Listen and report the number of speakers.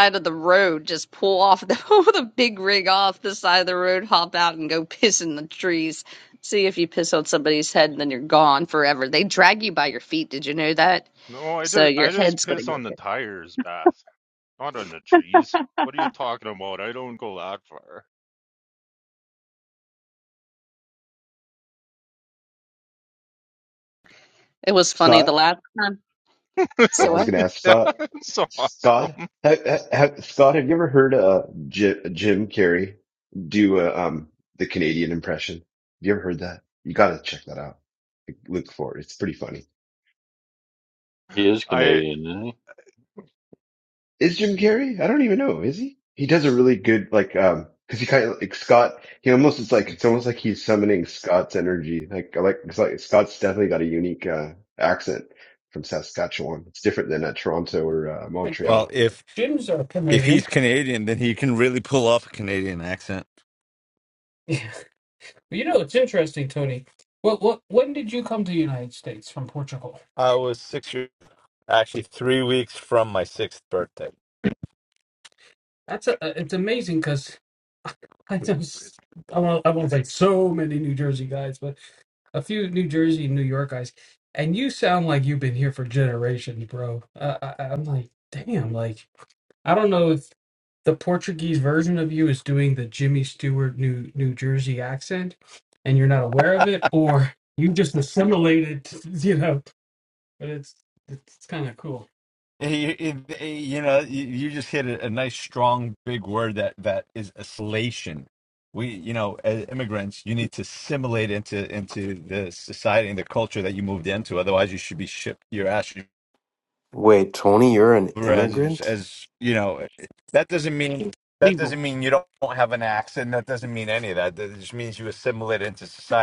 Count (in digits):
7